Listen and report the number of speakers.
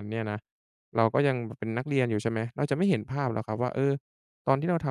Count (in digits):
1